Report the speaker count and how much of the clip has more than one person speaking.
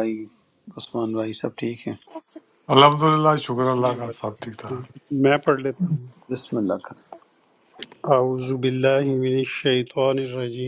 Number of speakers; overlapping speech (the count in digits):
3, about 4%